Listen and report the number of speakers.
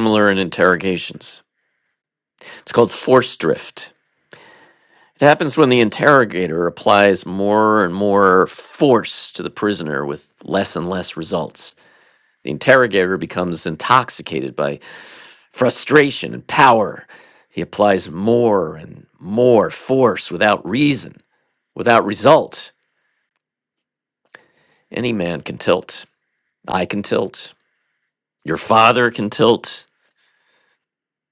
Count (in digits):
1